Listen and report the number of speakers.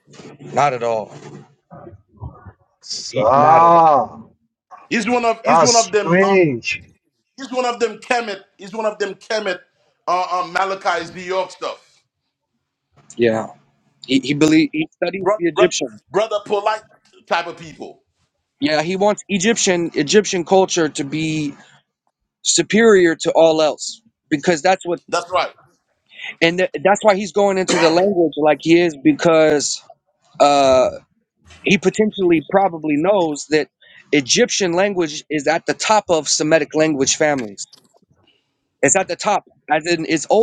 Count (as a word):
three